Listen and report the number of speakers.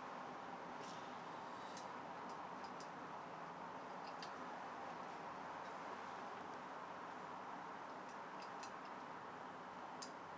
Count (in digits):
0